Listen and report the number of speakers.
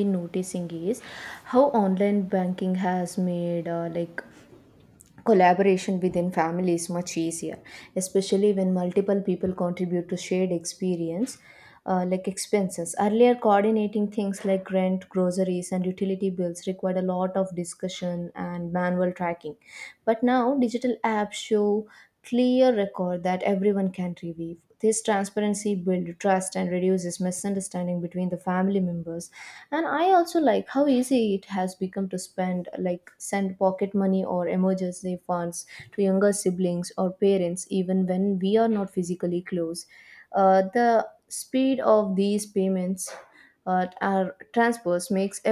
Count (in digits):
1